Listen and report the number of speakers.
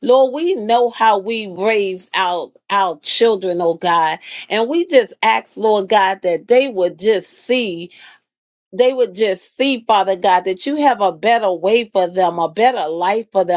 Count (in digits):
1